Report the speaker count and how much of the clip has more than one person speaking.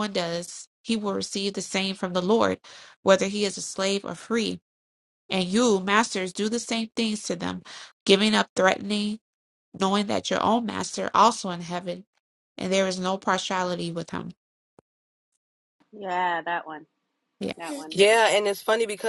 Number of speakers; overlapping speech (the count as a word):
three, under 1%